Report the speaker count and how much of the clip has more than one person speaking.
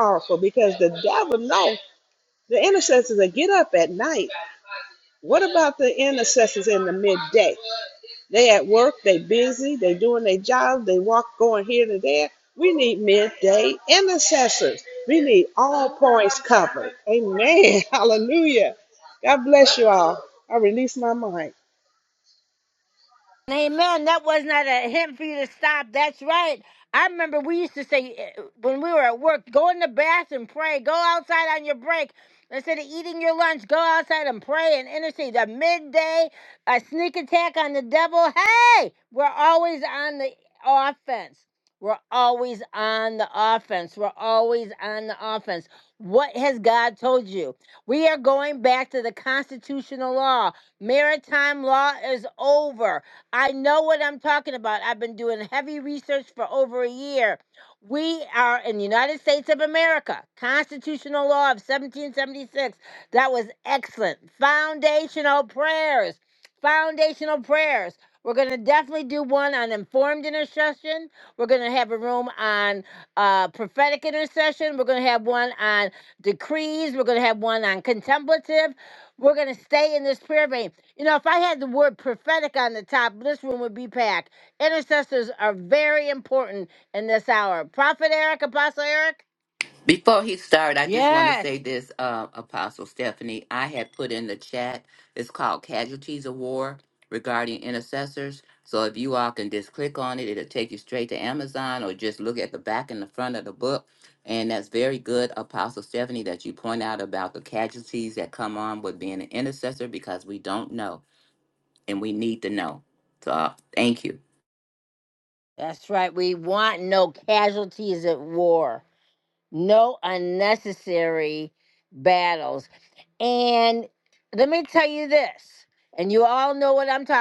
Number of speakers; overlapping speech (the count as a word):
three, under 1%